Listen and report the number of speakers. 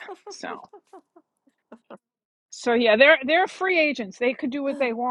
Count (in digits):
1